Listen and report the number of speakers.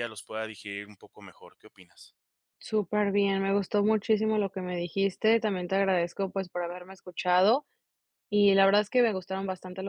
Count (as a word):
two